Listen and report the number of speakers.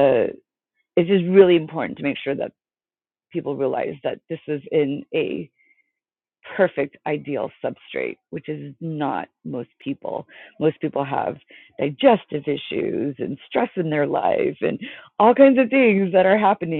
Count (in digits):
1